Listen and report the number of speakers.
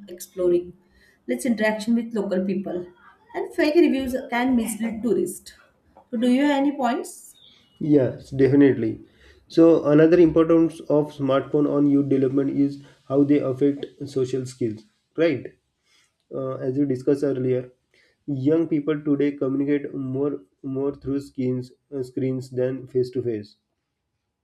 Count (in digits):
2